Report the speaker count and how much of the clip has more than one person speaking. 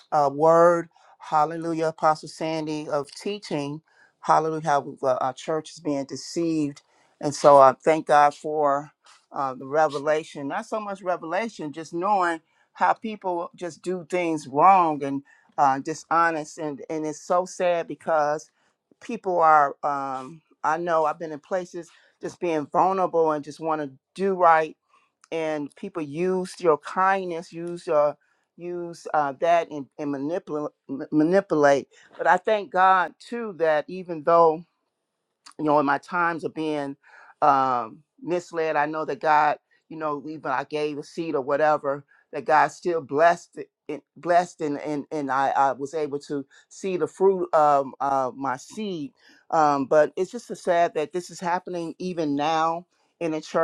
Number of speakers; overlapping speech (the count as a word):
one, no overlap